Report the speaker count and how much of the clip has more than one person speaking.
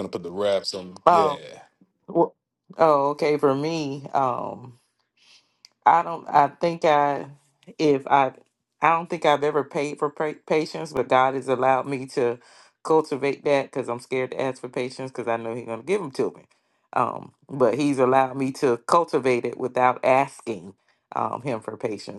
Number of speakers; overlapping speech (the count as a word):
two, about 1%